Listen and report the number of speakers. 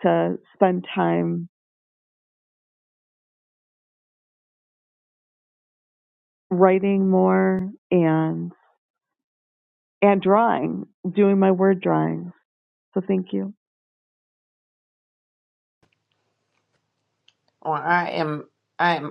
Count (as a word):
two